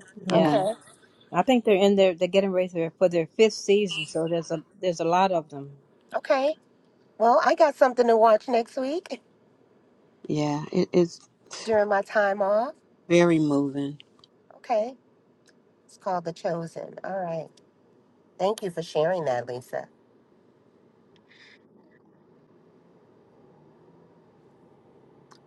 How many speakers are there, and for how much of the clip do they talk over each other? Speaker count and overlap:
3, about 2%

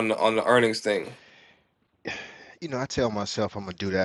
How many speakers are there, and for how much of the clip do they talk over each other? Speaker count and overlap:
2, no overlap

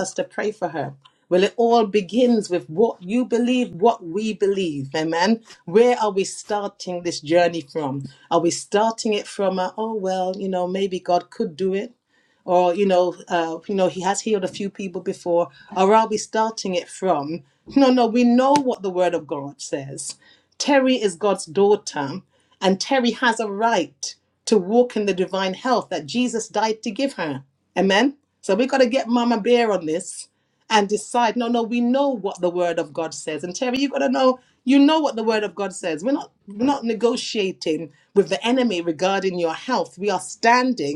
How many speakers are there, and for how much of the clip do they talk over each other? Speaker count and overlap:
1, no overlap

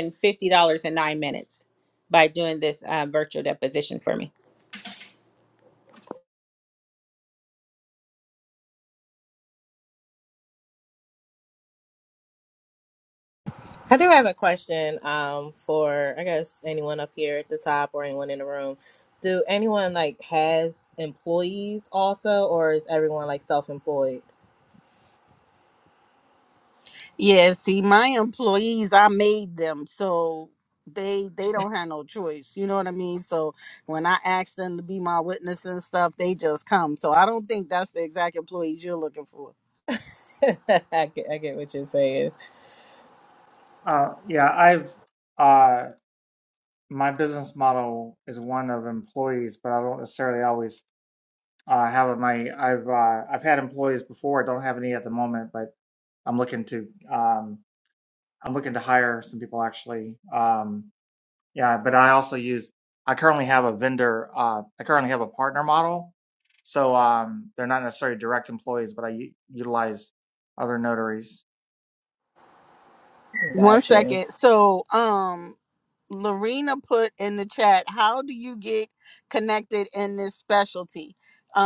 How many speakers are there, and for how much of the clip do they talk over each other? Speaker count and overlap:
4, about 1%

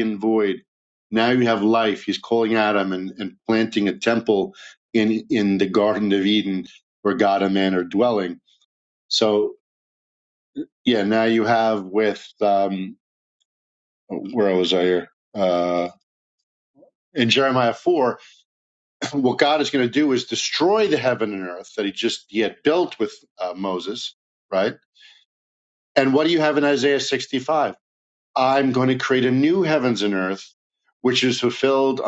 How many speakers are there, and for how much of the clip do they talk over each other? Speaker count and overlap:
1, no overlap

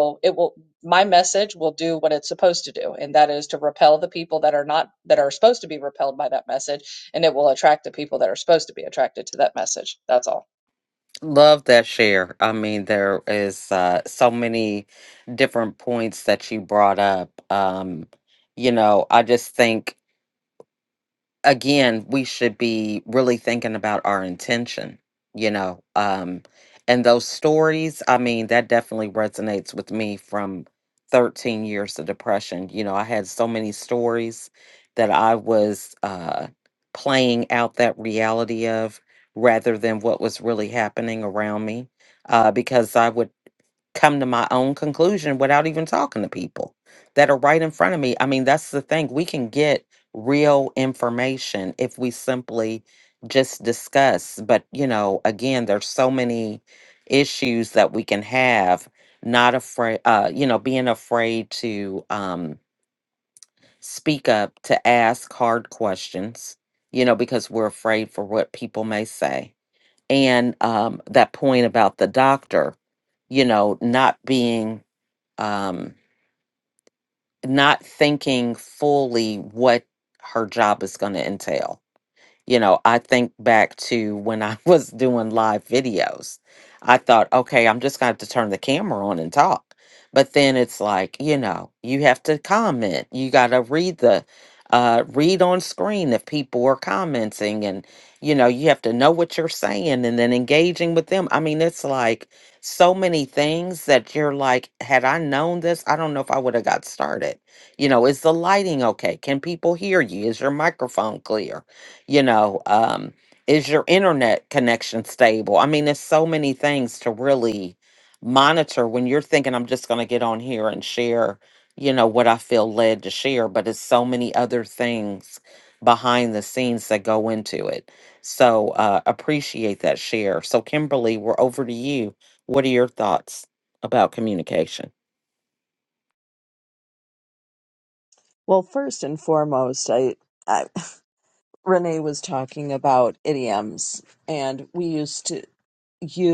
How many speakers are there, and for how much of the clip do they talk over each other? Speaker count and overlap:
3, no overlap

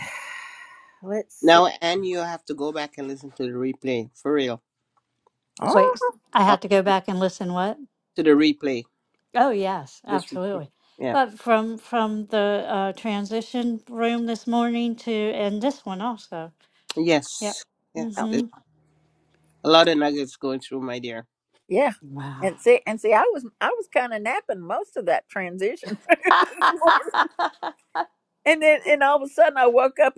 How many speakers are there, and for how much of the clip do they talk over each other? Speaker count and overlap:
3, about 6%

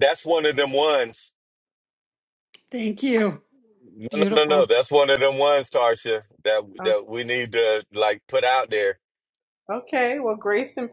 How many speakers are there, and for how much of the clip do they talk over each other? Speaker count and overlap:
3, about 5%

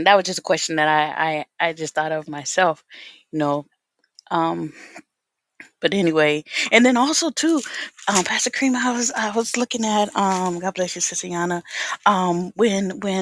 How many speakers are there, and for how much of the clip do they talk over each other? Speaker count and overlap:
1, no overlap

